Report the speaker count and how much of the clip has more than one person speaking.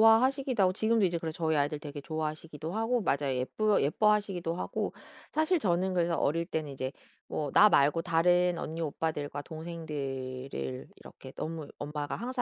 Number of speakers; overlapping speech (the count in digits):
1, no overlap